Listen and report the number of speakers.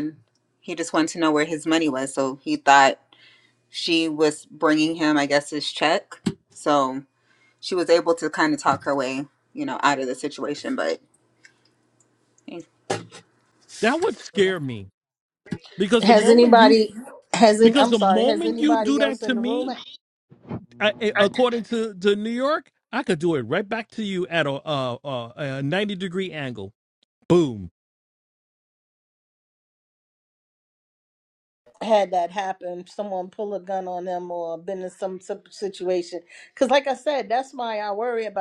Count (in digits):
3